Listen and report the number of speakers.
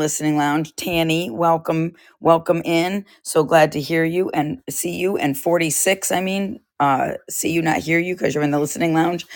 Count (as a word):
one